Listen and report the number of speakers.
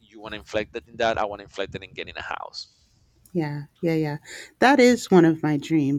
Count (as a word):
two